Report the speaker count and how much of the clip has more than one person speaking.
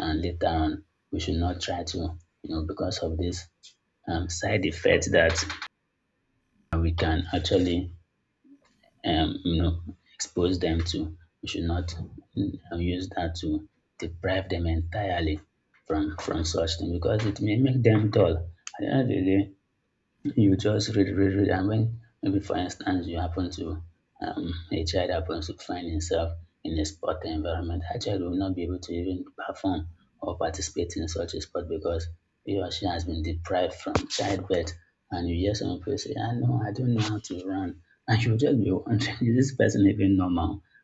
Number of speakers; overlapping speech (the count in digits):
1, no overlap